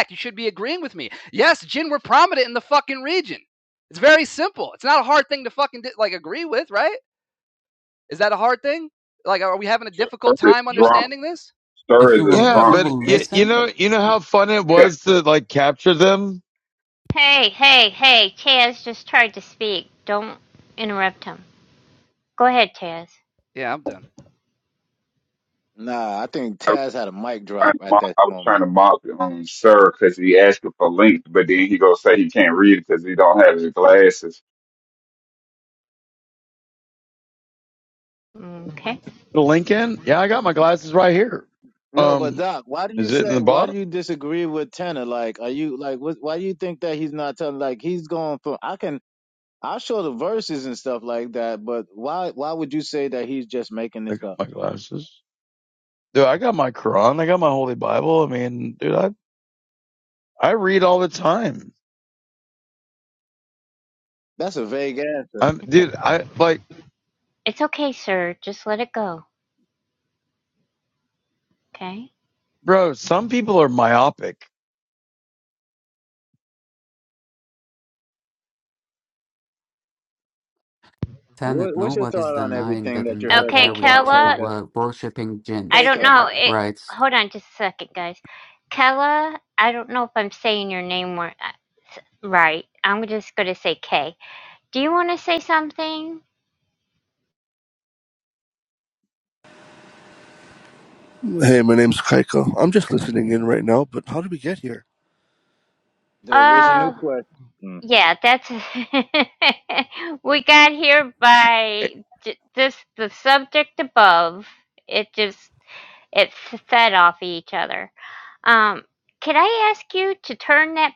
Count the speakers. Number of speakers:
seven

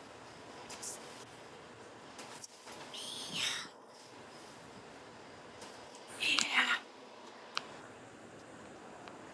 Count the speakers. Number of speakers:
zero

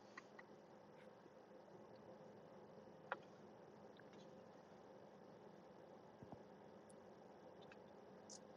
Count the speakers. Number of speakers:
zero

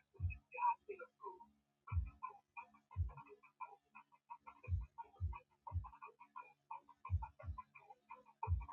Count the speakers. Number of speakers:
zero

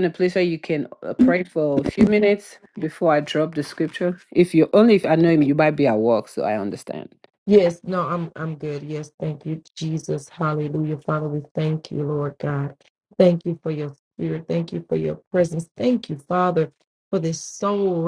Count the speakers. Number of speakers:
two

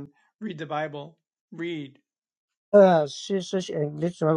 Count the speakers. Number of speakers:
two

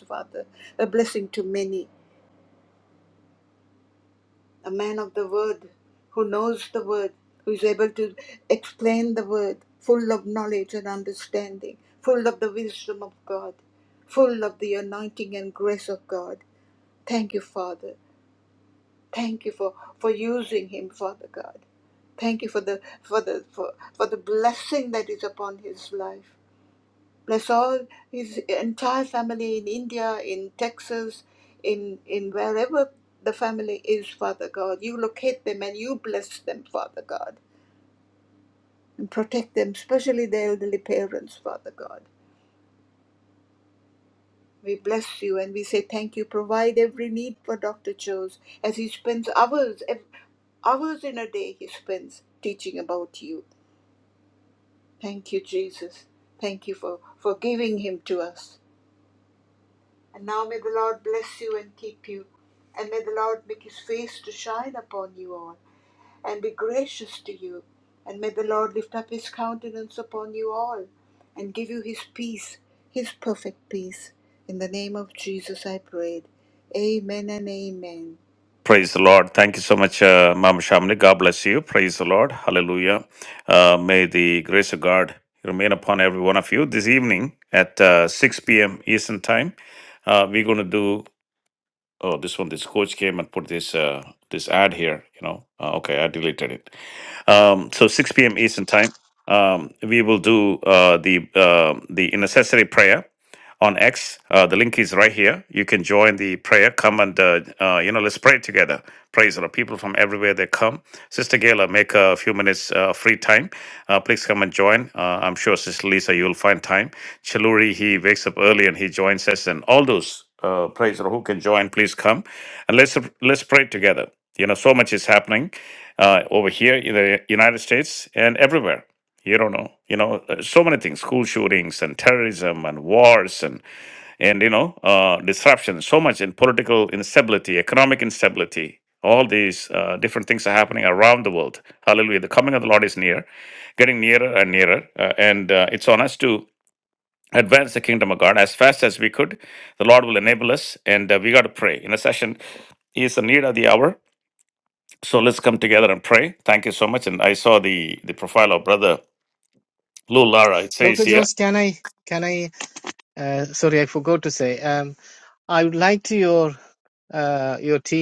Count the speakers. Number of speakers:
three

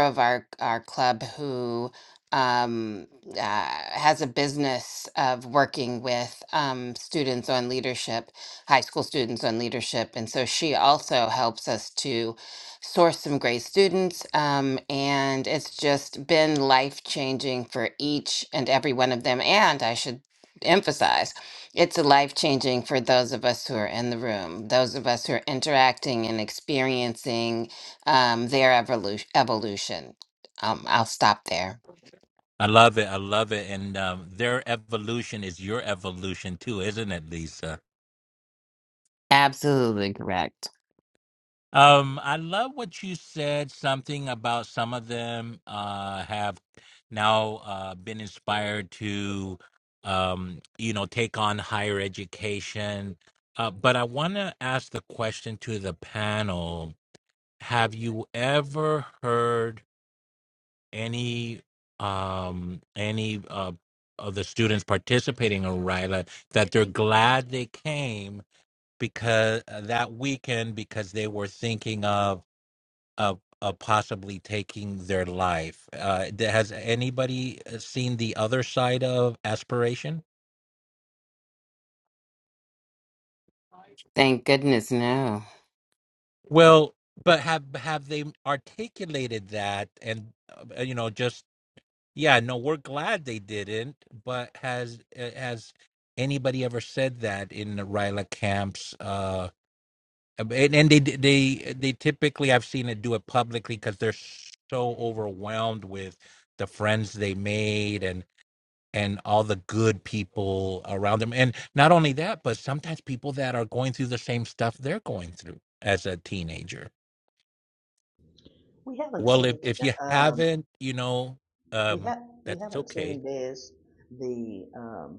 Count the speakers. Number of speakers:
three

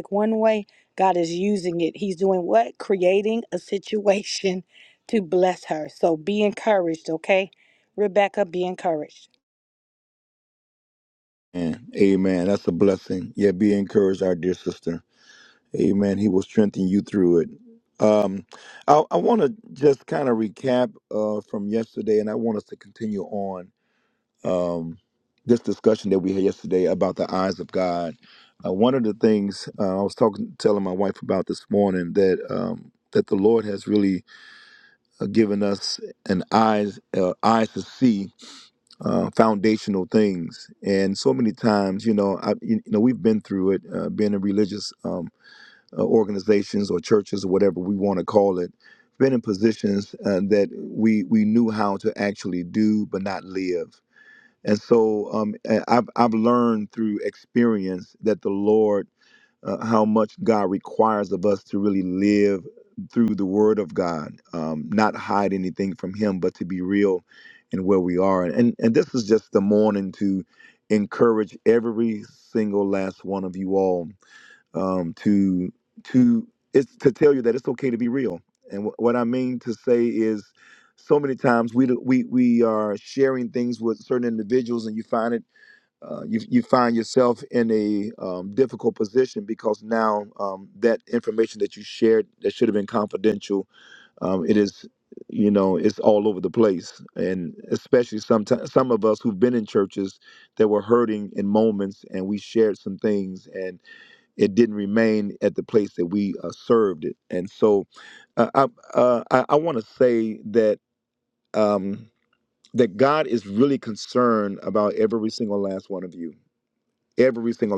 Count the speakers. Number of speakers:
two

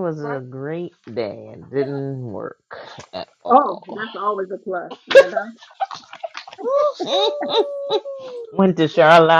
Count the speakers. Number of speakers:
three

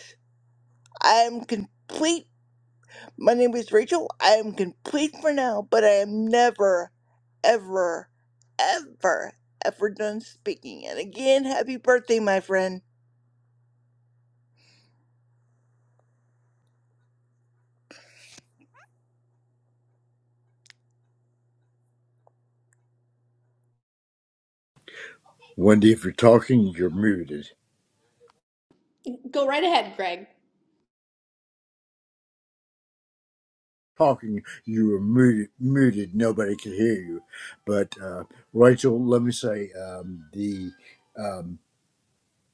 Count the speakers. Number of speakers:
three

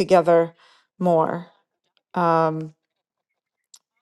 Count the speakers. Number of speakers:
one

